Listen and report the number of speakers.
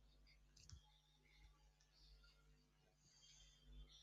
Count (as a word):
zero